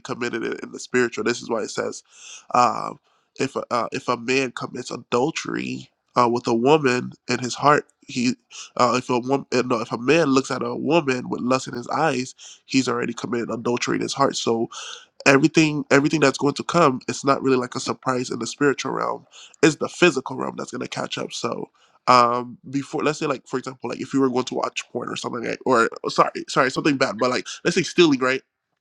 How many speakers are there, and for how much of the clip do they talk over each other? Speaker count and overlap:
one, no overlap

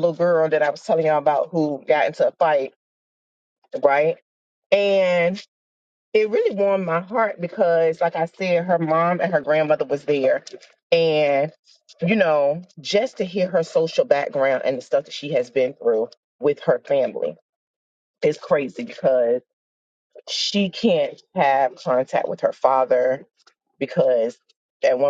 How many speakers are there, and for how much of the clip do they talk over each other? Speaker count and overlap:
one, no overlap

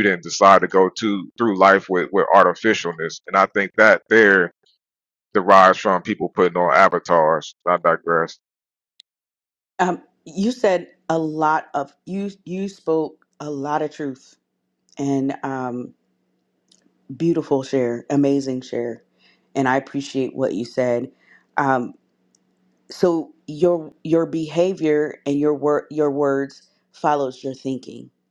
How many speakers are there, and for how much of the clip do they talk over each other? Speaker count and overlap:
two, no overlap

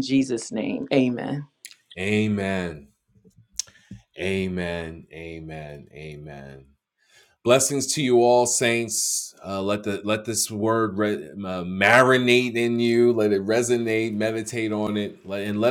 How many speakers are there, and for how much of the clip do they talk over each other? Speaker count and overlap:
two, no overlap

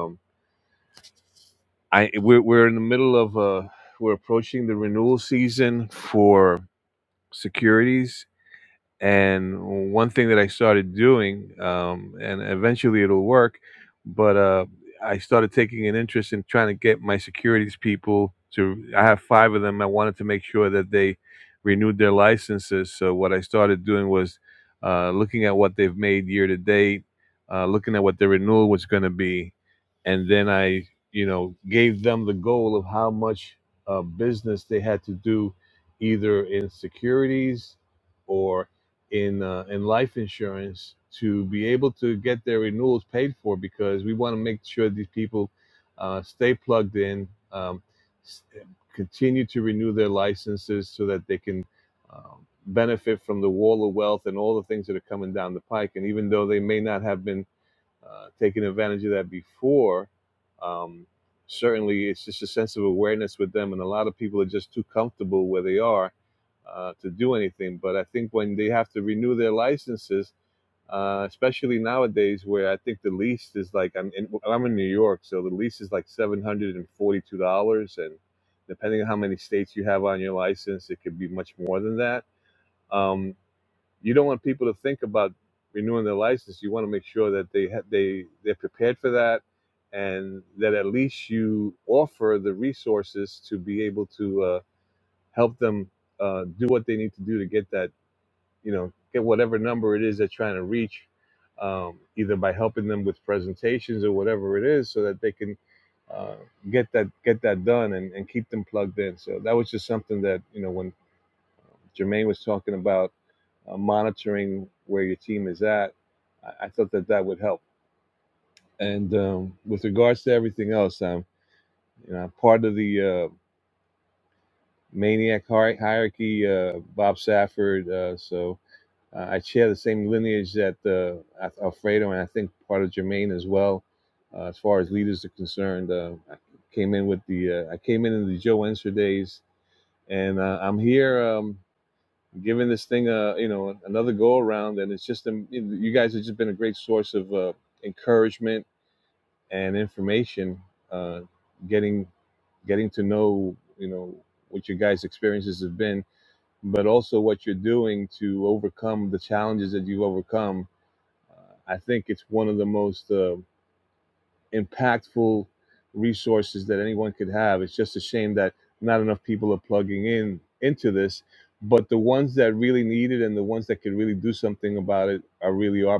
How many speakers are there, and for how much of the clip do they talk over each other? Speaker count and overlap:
one, no overlap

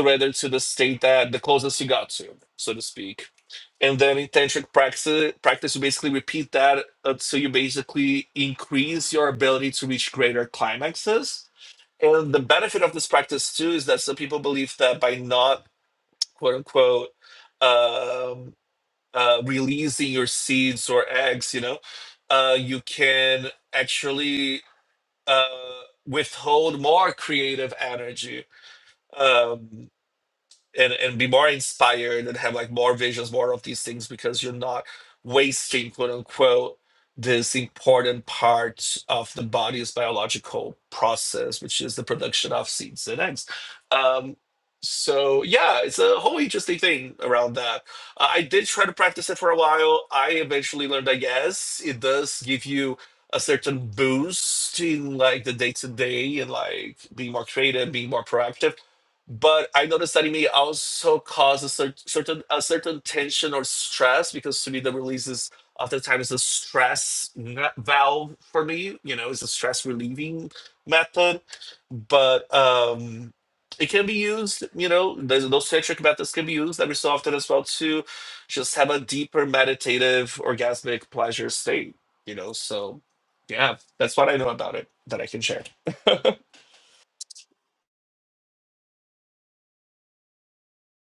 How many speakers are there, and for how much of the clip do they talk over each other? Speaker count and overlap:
one, no overlap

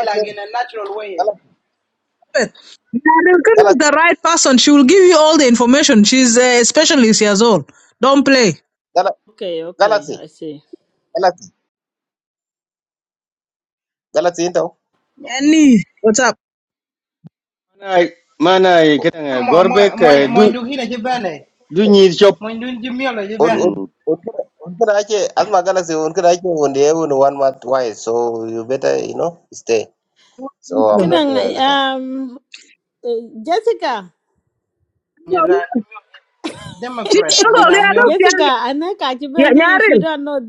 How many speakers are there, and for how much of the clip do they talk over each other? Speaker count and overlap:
five, about 14%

